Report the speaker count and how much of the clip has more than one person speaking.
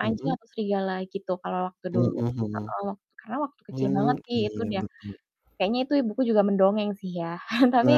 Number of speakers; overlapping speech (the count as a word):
two, about 26%